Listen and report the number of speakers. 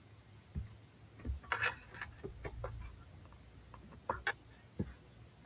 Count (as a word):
zero